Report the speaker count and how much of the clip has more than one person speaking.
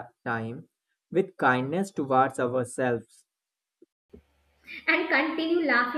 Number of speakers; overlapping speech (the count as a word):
two, no overlap